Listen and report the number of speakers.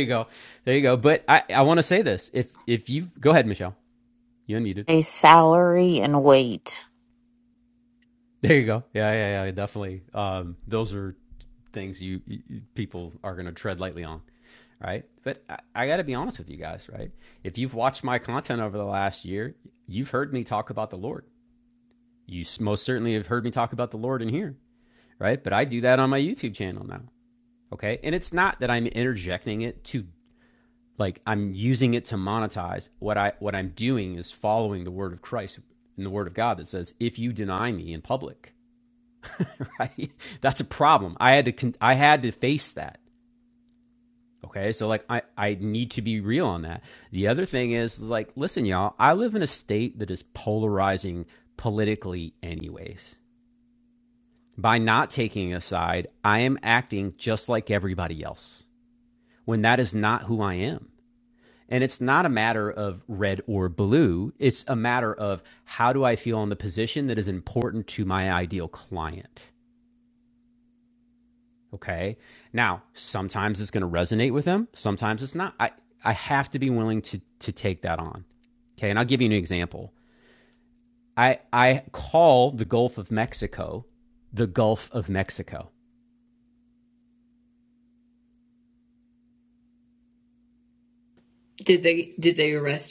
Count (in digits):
3